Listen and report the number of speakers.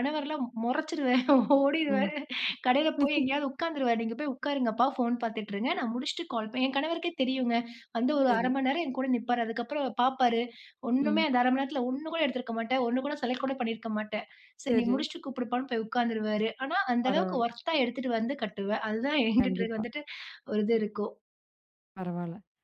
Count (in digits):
2